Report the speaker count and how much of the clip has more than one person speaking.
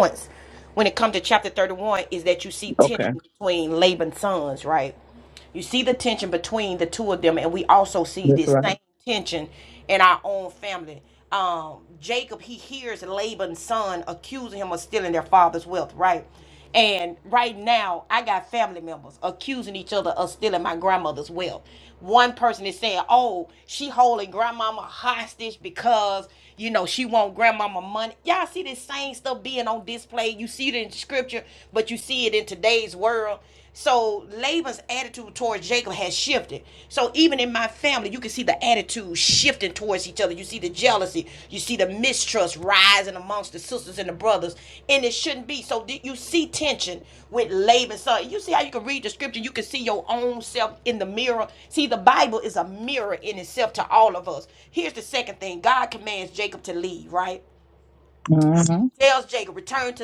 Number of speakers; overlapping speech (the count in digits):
2, about 1%